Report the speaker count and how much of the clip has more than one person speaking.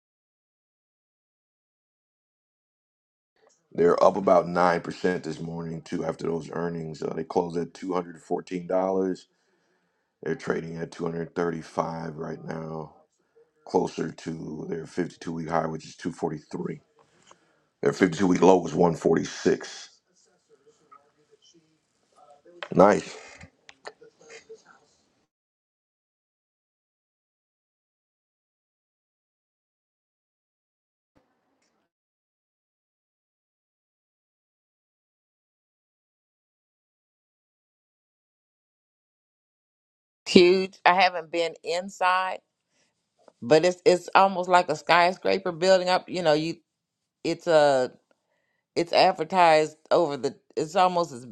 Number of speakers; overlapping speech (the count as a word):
two, no overlap